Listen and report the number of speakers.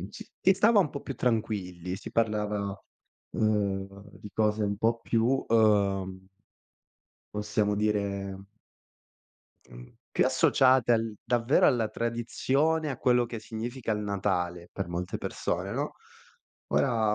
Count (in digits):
1